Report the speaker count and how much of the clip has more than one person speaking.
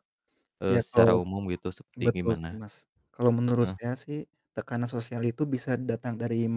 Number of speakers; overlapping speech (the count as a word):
two, about 18%